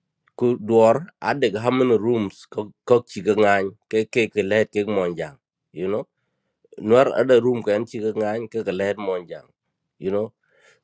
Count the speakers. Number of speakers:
1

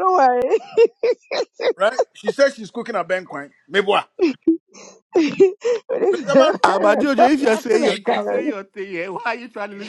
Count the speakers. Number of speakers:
3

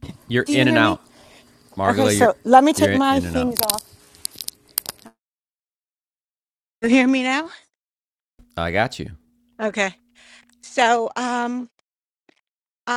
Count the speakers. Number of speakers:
2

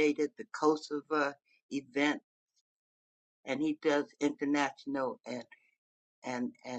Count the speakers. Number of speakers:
1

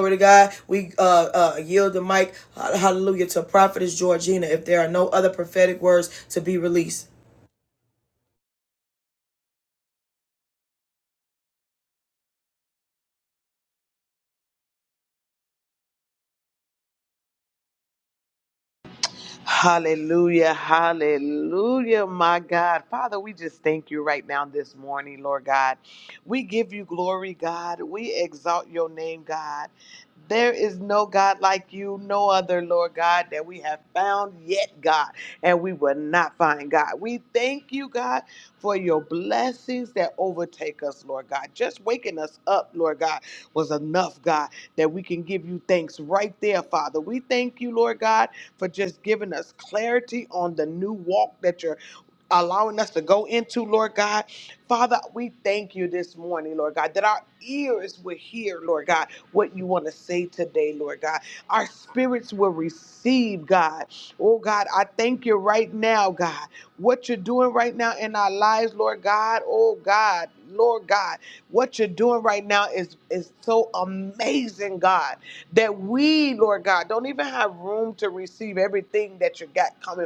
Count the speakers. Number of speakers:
2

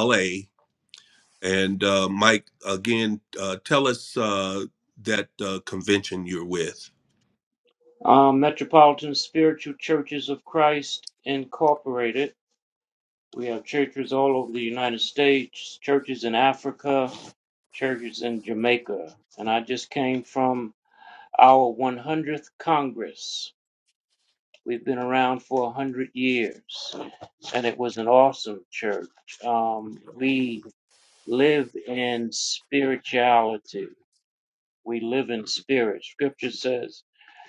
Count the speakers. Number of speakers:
2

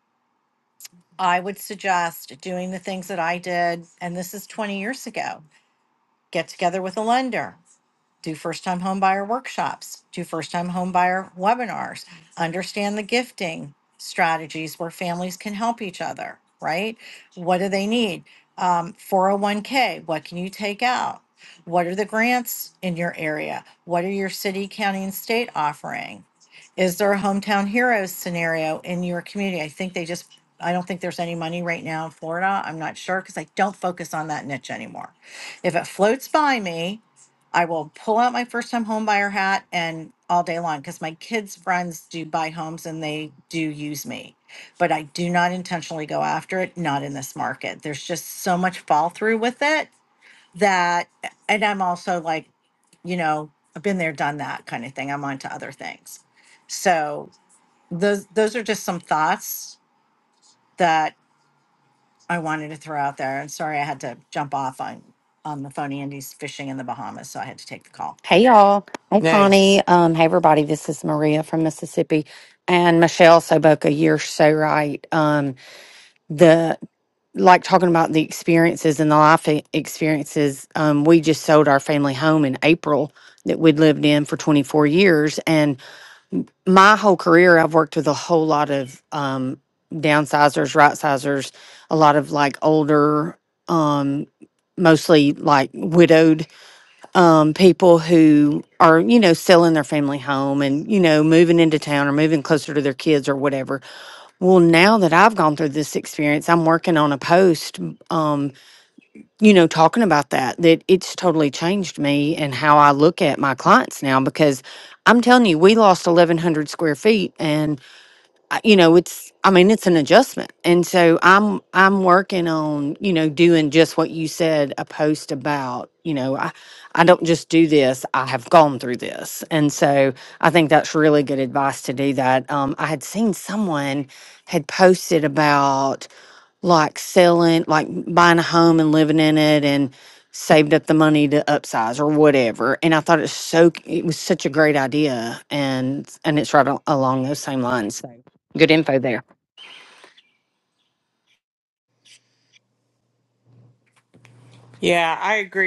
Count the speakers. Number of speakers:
3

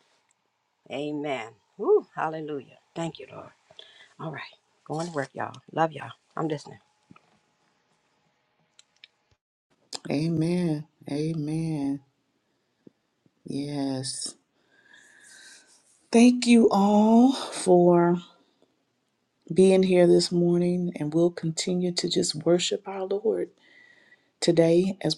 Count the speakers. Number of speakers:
2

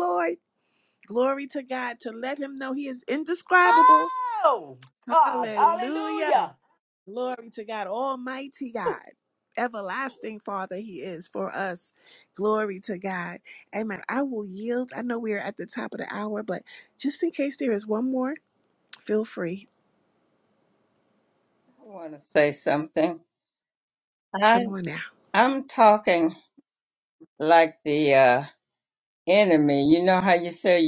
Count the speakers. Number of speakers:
3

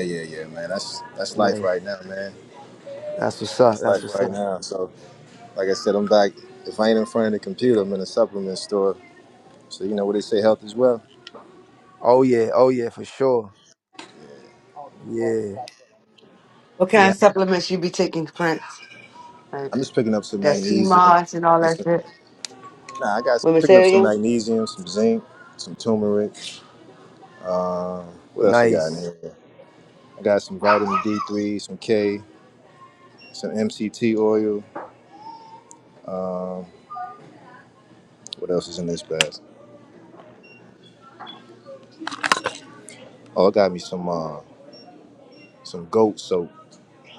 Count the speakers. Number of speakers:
3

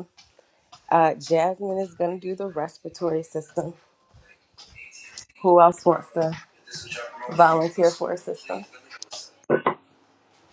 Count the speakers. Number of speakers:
1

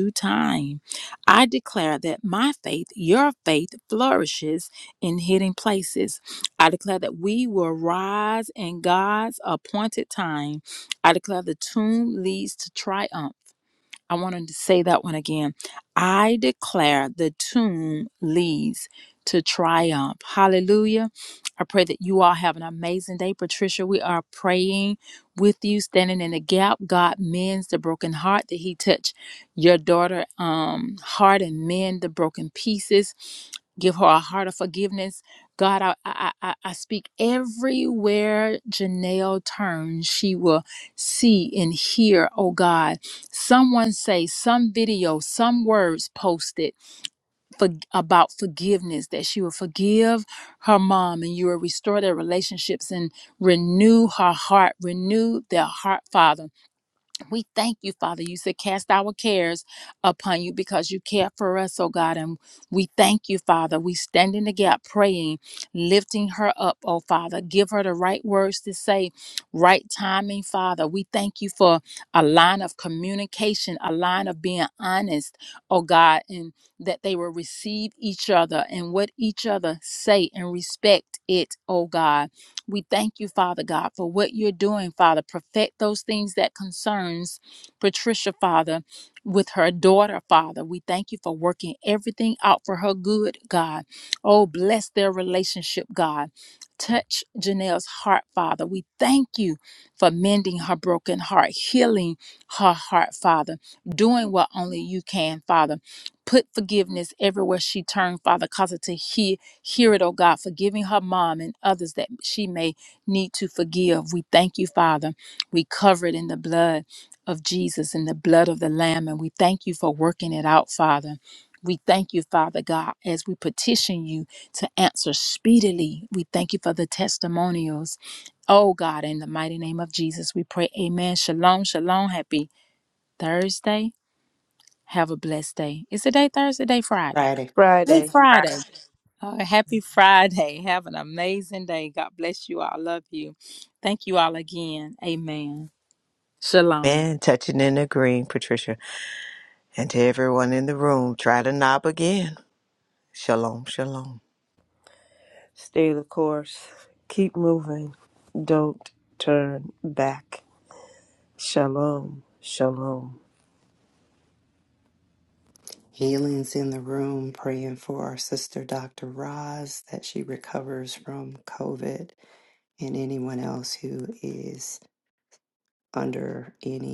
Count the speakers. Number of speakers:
4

